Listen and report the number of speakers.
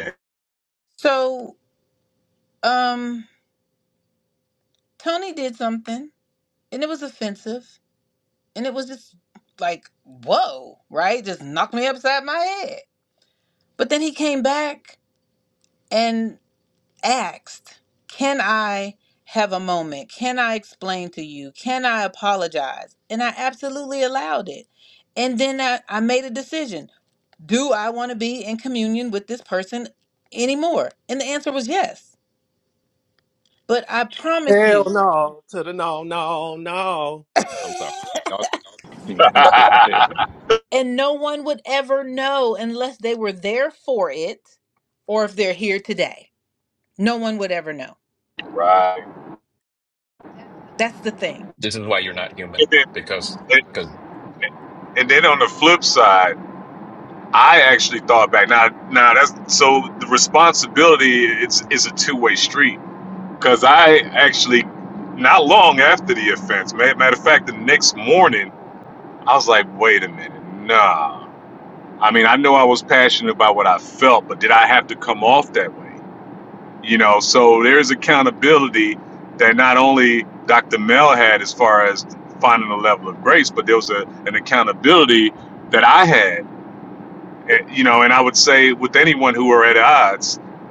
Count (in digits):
4